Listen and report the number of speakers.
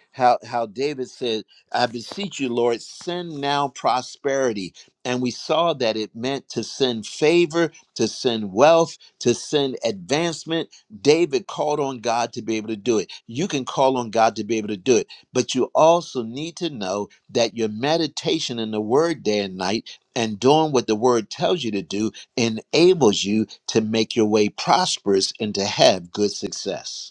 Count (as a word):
one